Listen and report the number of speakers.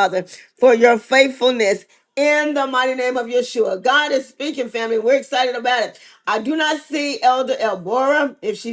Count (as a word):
one